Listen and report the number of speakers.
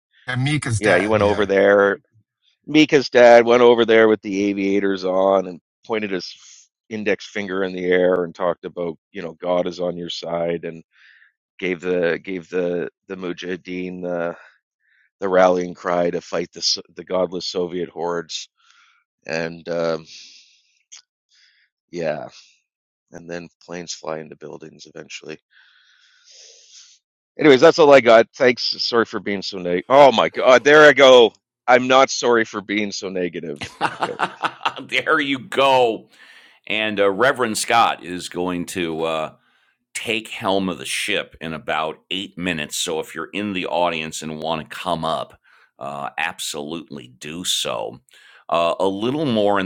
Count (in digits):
3